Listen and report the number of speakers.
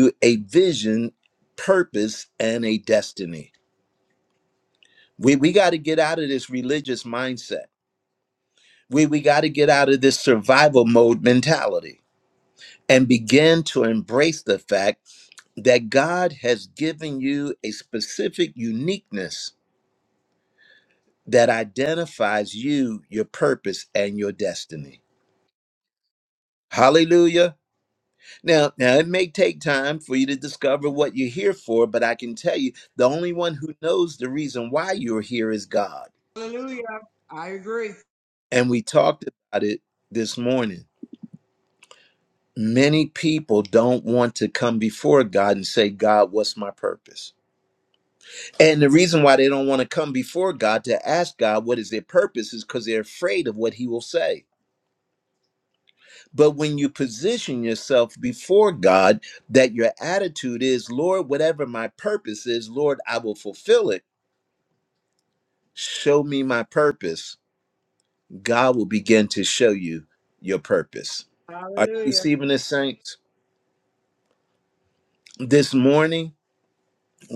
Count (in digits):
2